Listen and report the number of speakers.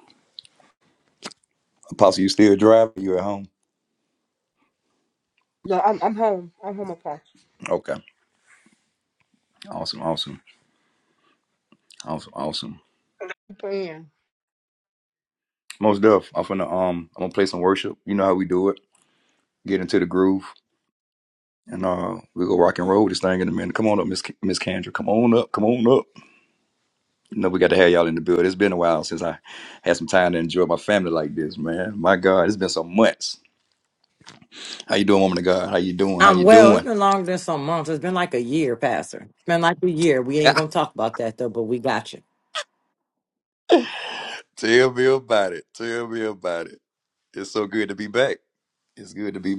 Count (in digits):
3